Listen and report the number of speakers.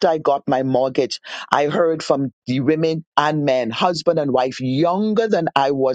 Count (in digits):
1